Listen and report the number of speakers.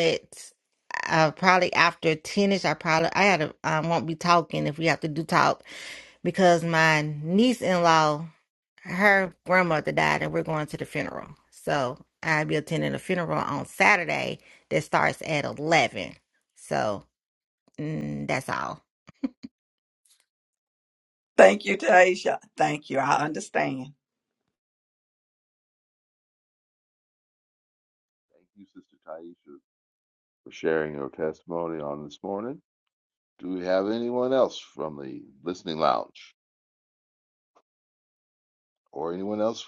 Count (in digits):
3